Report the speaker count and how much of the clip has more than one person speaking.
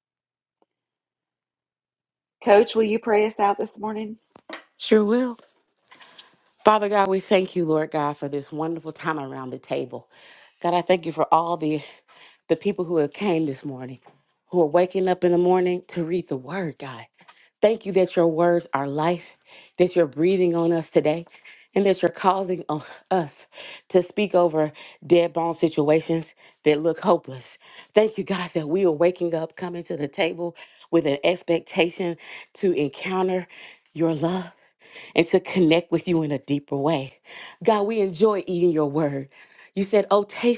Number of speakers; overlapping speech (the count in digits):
2, no overlap